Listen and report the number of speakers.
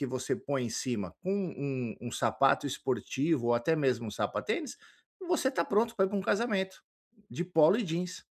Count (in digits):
1